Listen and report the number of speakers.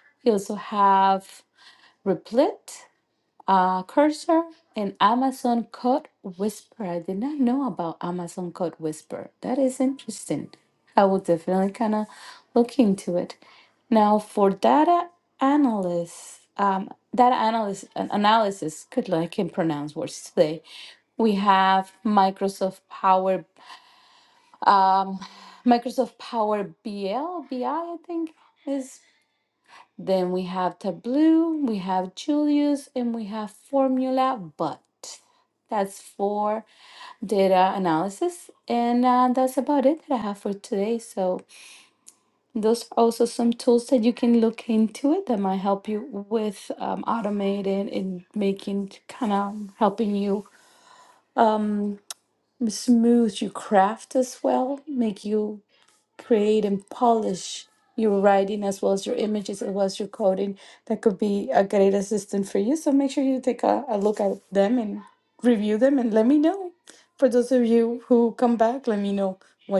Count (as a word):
one